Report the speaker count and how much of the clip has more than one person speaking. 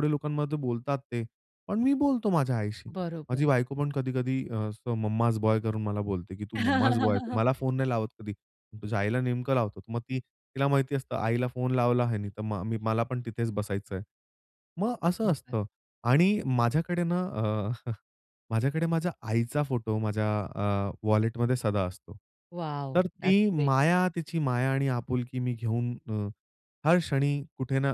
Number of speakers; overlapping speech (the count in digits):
2, about 3%